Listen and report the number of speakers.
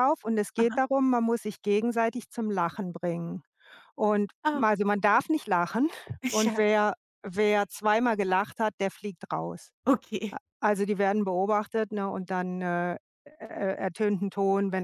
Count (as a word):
two